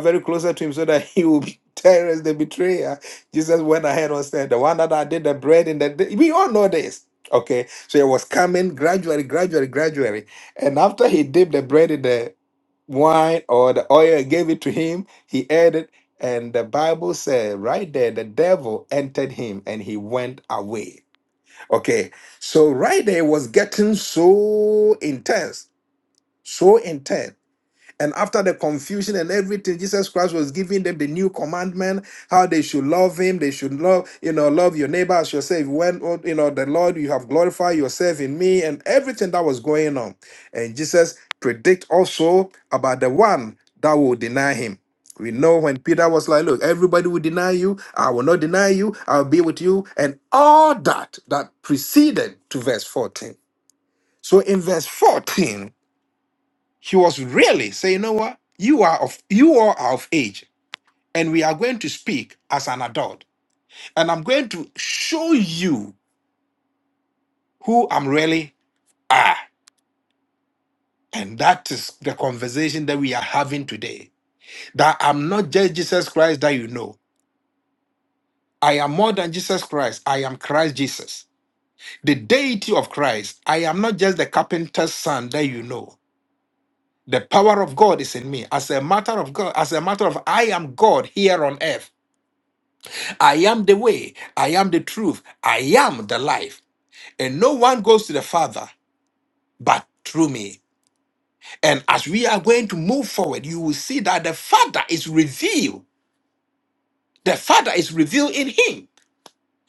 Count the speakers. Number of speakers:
1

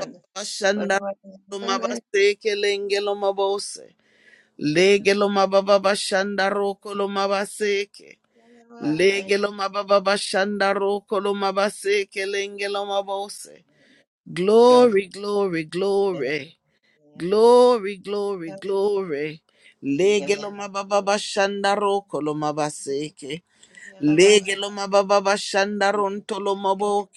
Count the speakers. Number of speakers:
2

